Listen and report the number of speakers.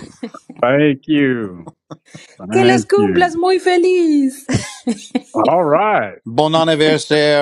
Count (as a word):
three